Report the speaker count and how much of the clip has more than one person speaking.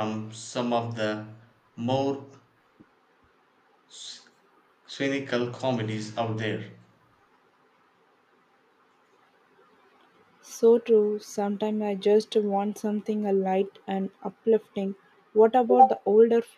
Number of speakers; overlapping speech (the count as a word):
two, no overlap